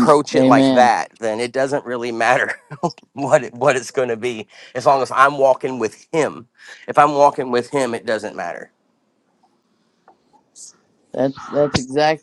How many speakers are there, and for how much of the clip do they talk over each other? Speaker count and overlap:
two, about 8%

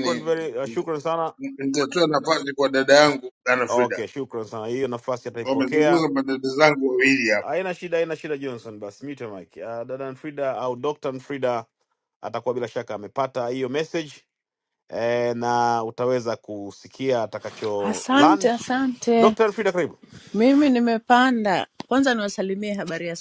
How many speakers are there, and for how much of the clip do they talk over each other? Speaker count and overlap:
three, about 10%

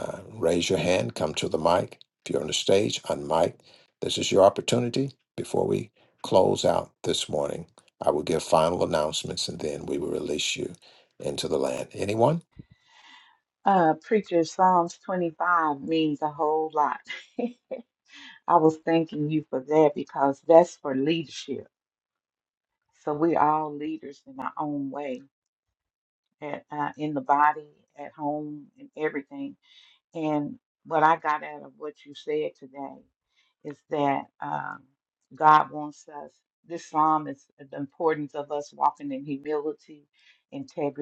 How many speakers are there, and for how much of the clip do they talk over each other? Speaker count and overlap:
two, no overlap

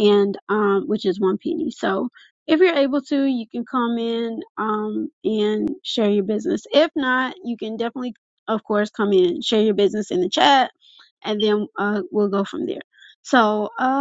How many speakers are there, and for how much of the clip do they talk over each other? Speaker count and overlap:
one, no overlap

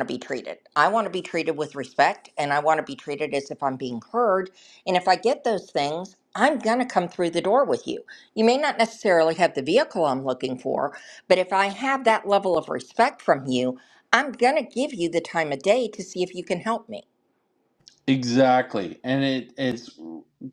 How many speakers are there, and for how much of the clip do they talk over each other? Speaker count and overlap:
two, no overlap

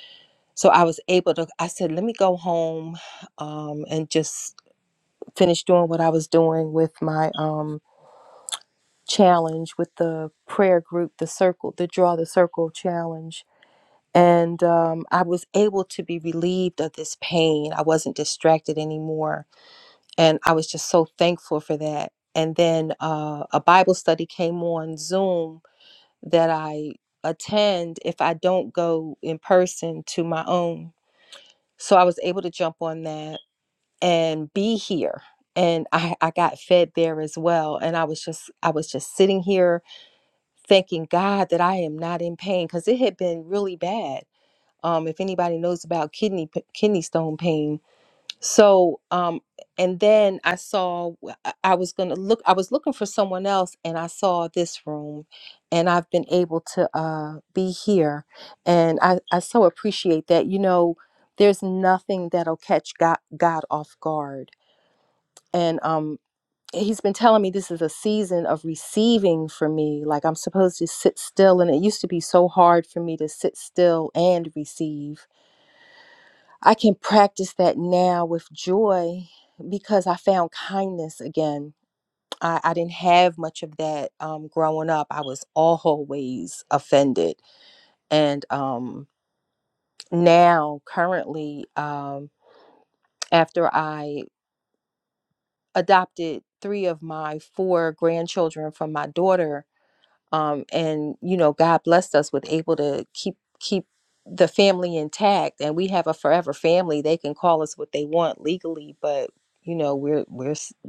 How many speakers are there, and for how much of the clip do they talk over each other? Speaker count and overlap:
one, no overlap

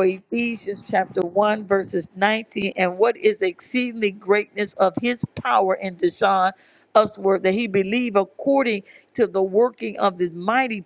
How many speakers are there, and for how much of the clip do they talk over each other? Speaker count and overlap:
one, no overlap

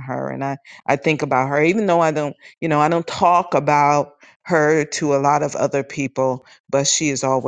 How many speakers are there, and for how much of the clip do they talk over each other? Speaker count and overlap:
one, no overlap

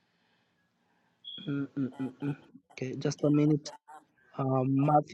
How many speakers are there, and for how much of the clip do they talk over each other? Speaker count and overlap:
one, no overlap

